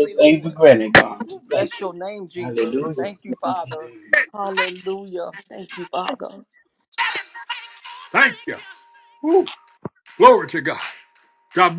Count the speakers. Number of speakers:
3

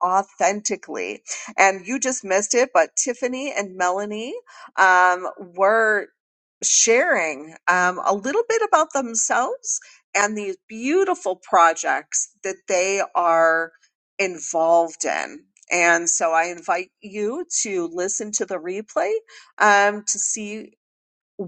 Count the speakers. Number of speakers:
1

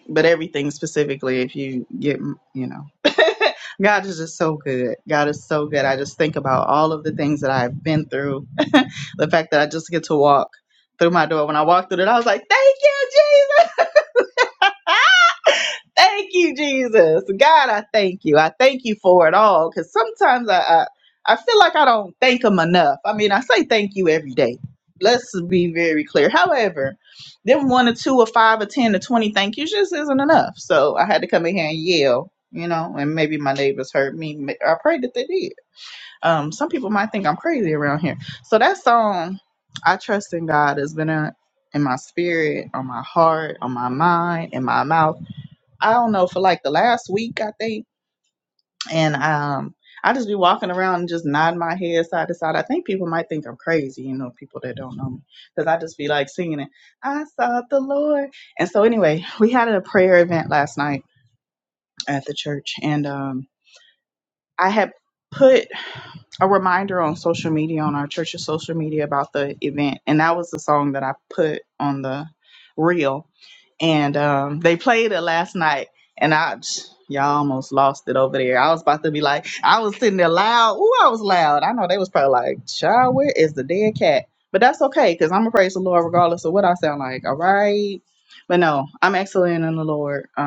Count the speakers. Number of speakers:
1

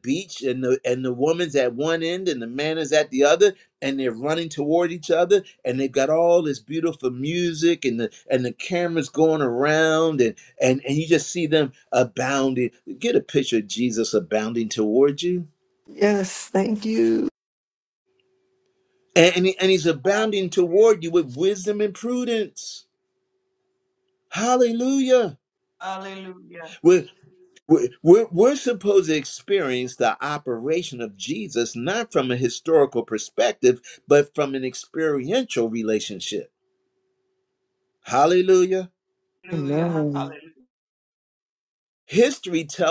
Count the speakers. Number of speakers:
3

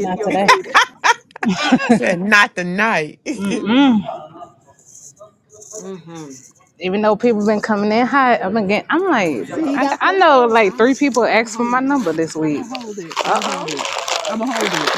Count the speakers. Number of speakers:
4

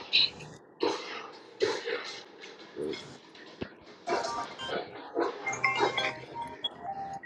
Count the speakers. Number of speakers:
0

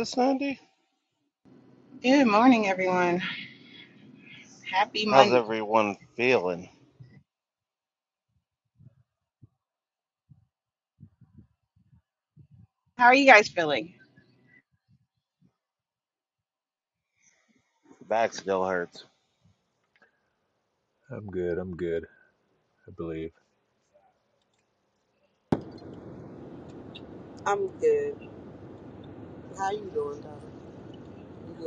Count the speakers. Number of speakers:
4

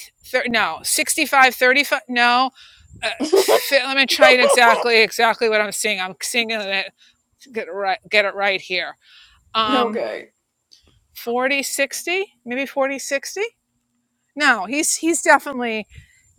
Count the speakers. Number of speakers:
2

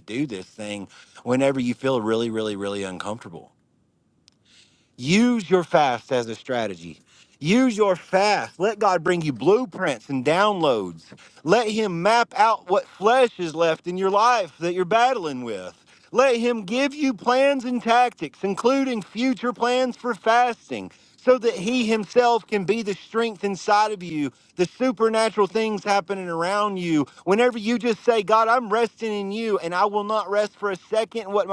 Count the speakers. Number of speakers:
1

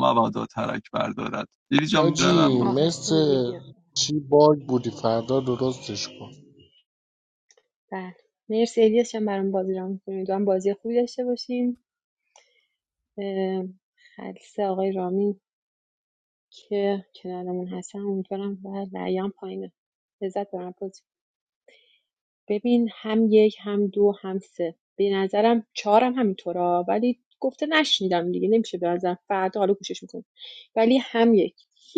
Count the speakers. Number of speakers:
3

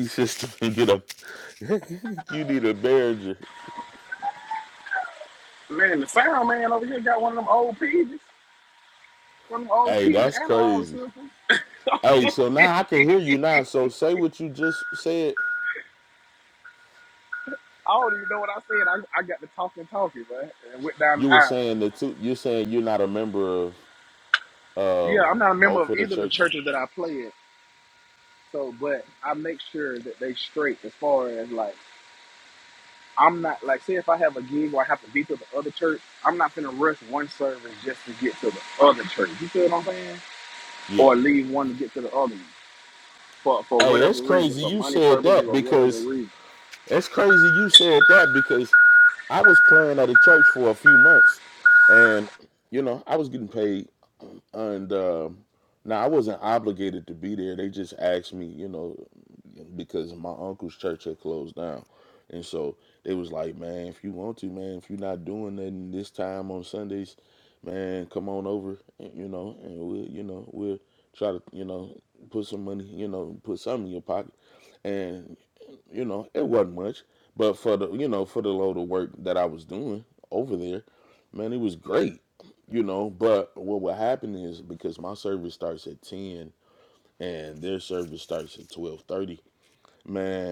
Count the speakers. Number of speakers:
2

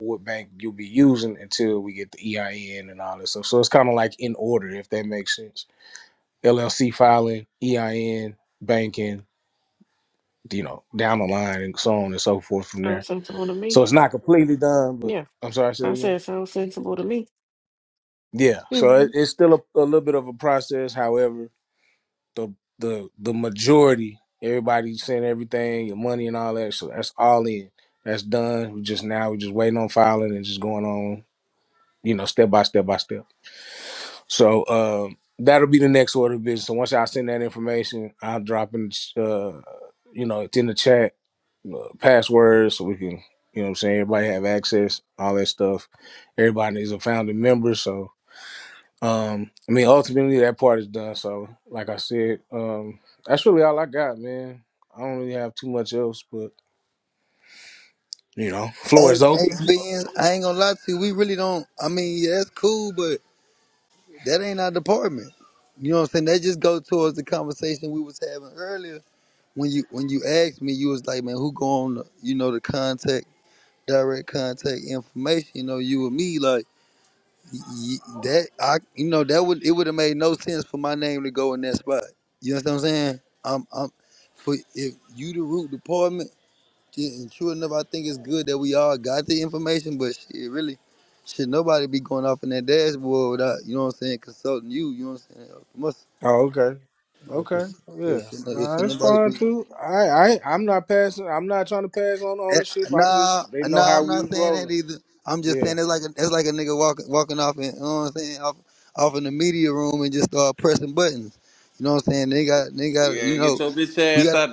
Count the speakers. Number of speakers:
4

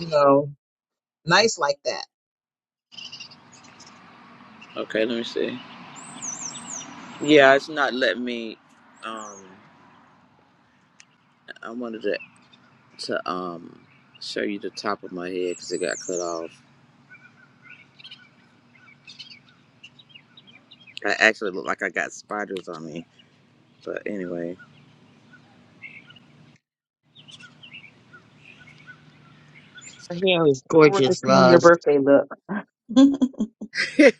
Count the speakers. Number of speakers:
3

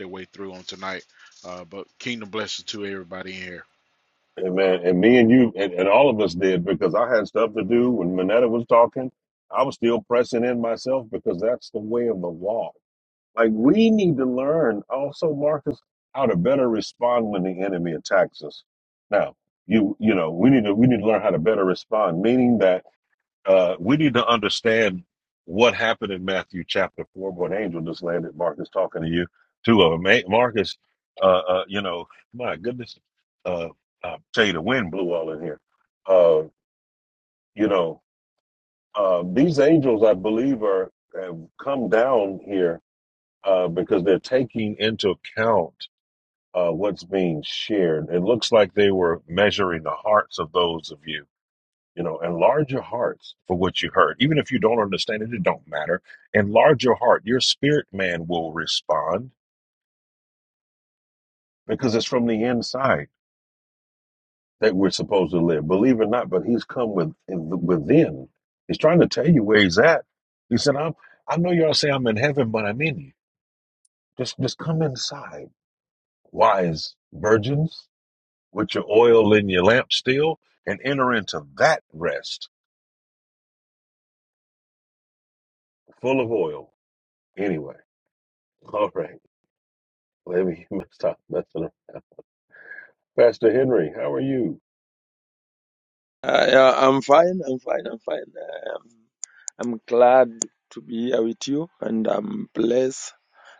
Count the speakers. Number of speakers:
3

